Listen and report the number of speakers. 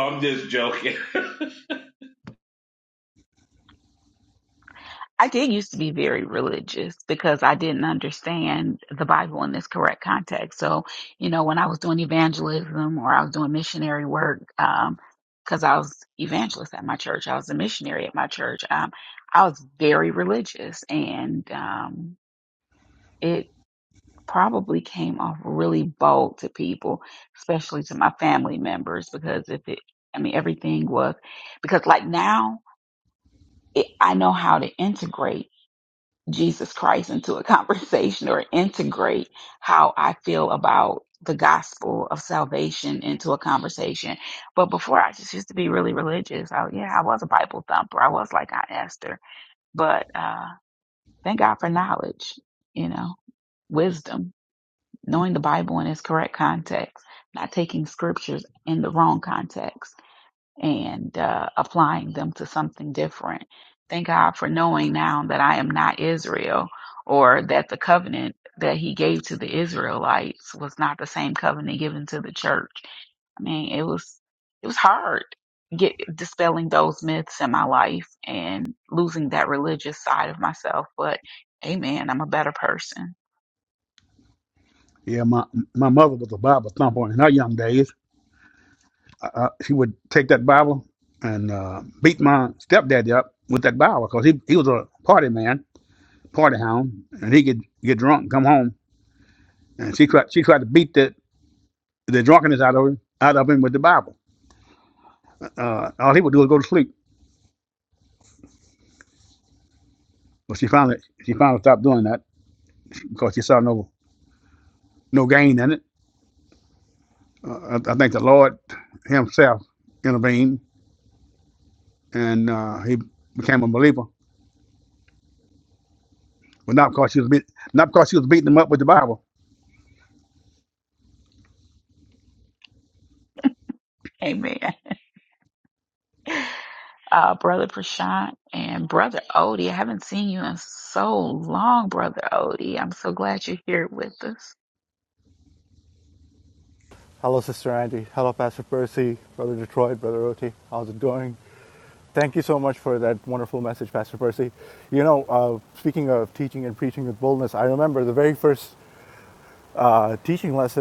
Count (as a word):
four